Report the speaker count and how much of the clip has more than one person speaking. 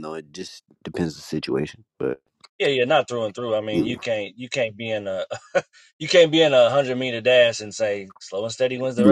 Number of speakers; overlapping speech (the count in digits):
2, about 5%